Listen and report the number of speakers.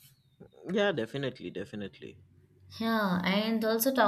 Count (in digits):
2